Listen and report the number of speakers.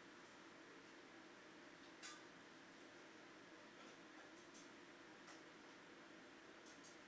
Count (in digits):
0